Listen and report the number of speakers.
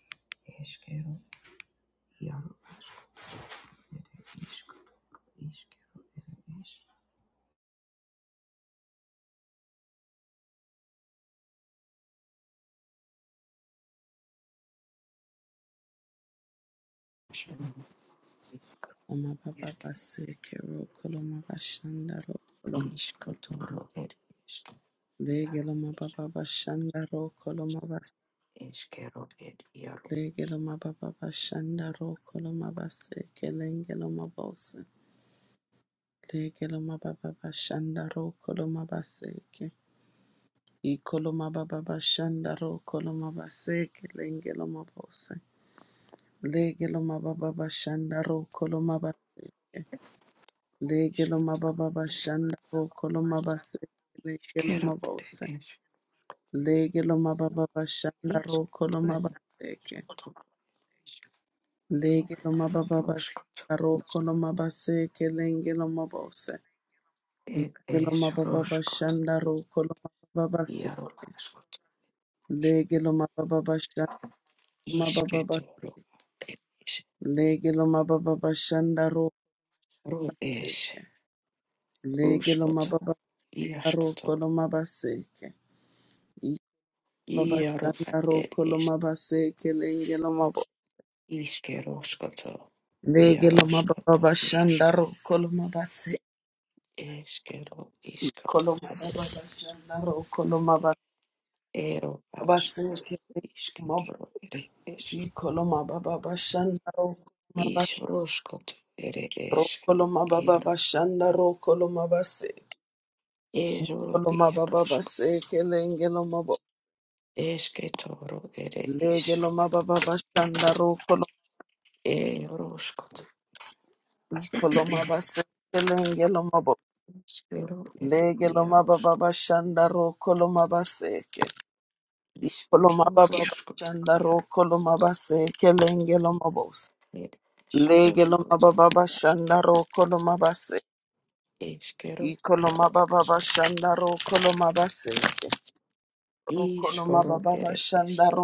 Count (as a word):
two